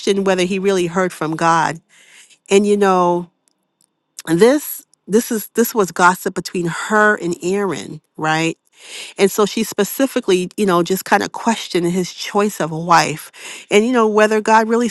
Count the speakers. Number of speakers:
1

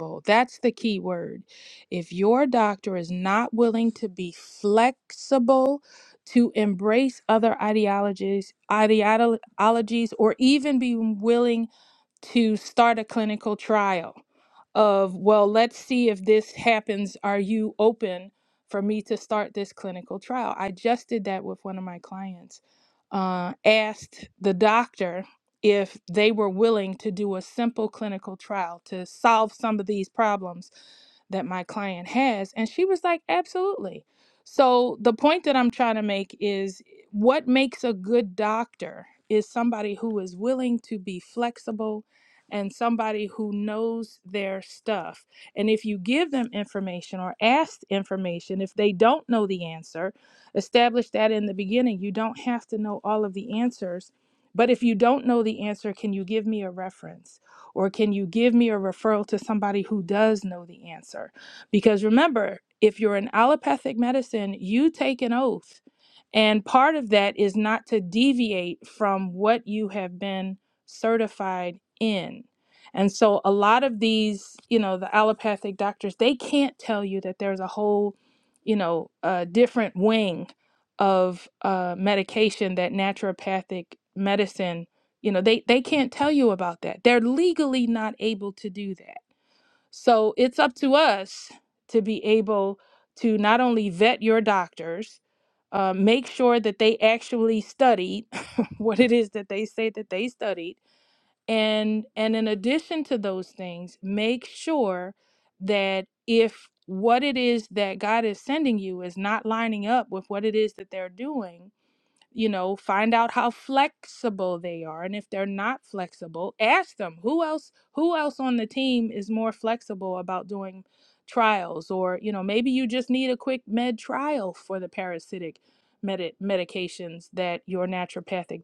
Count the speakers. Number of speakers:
1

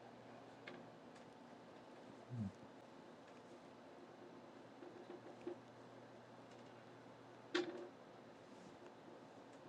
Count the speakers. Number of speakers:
0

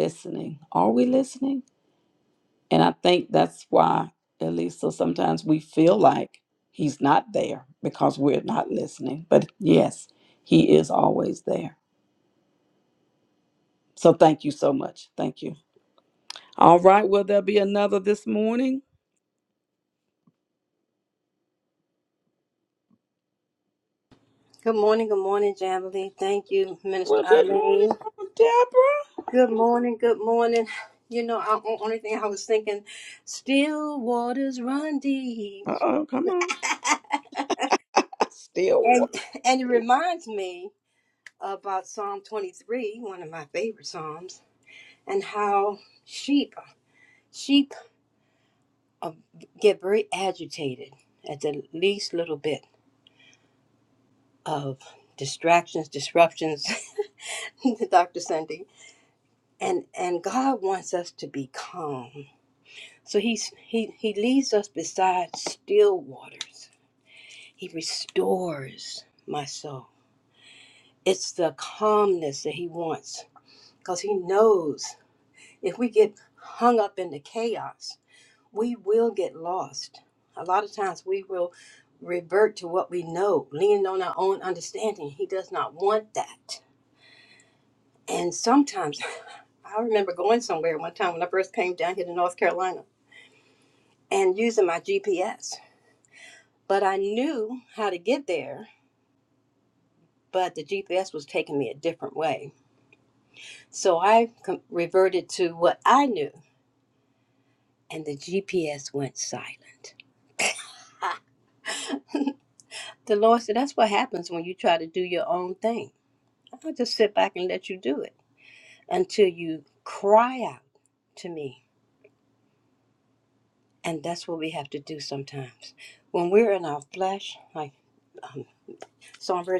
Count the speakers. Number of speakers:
2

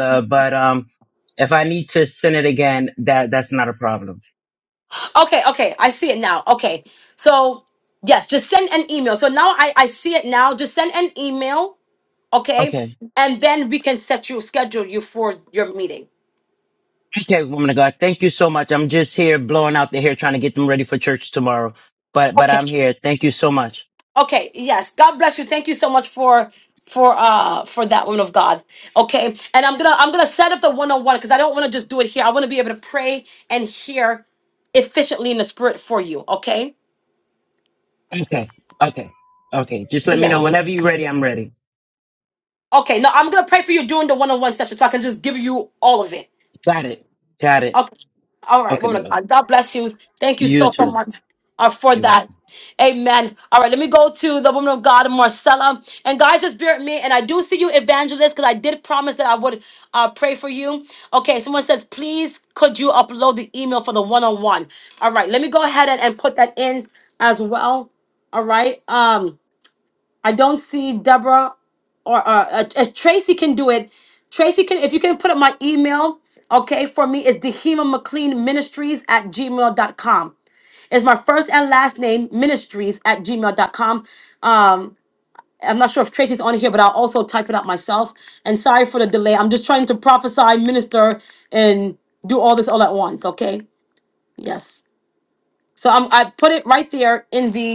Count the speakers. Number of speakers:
2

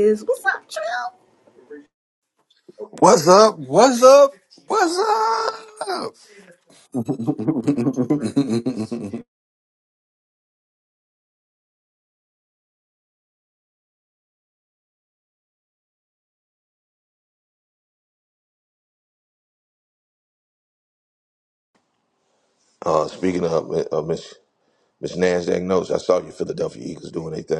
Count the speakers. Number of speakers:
3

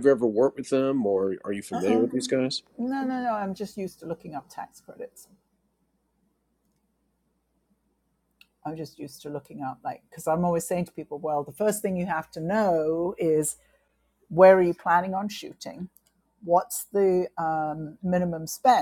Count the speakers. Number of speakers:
2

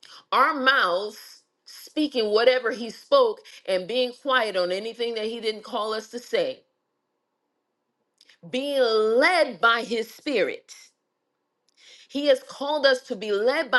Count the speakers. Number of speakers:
1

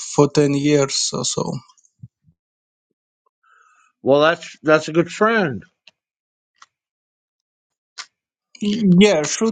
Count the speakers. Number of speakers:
2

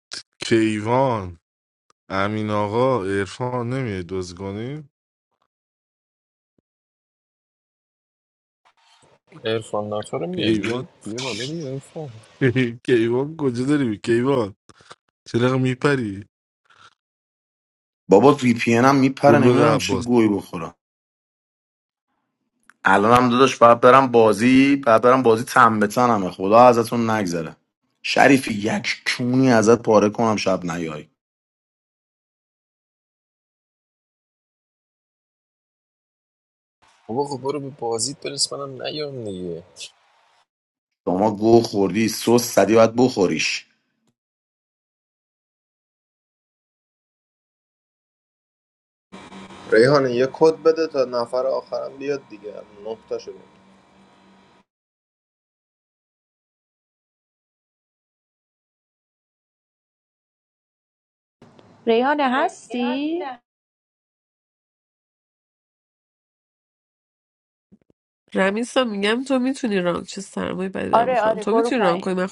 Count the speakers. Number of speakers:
6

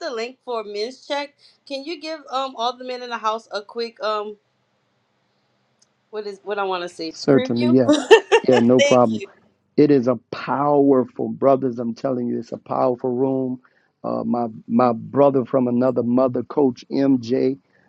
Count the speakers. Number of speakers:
2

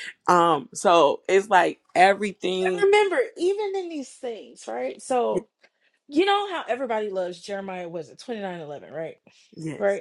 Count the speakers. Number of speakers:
2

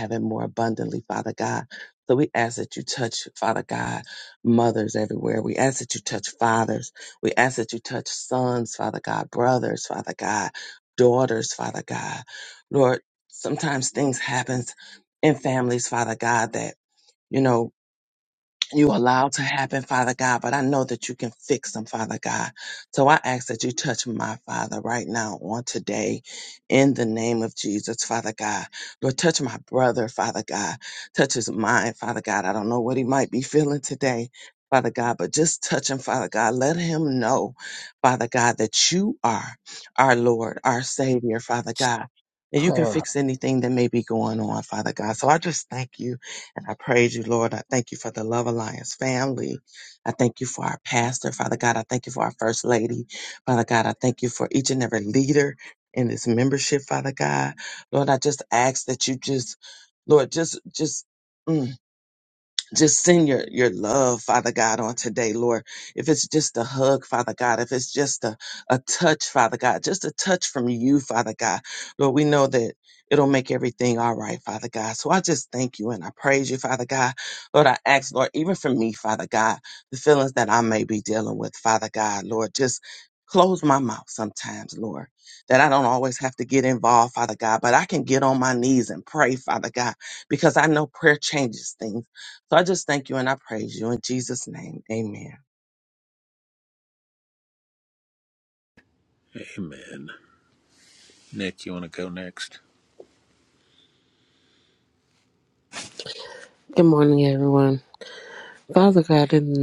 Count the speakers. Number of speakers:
3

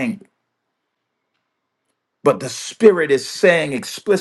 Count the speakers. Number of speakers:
1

